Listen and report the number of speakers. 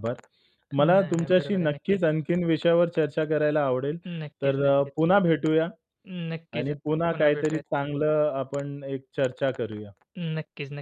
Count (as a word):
two